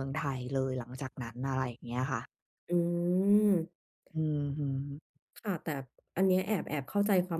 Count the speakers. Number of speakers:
2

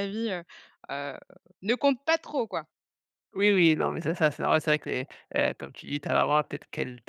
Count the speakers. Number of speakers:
2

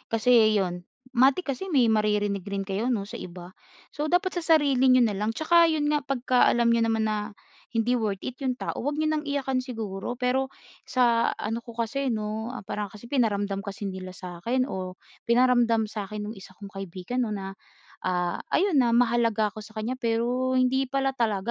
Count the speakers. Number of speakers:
1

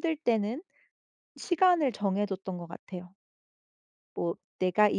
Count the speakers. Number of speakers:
1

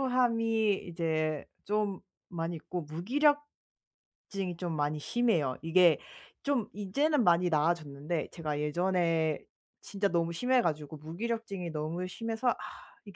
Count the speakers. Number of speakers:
1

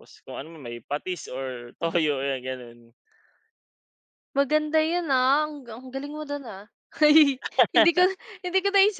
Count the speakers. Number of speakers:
2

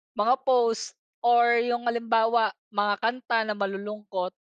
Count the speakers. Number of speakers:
1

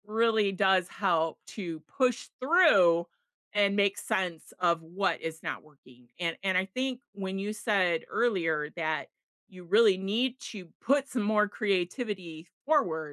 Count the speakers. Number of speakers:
1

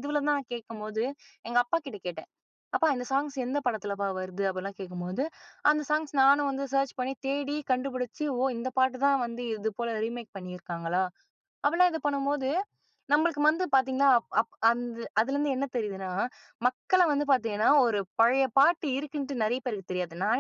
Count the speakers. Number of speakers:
1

